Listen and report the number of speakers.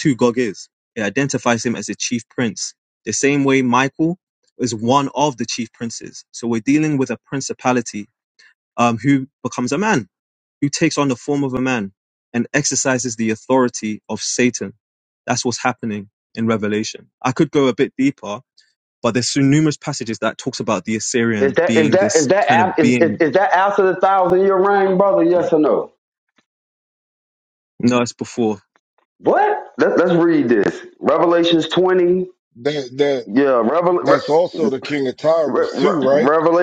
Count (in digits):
3